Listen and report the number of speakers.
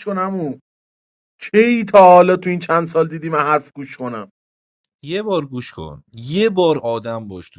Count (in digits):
2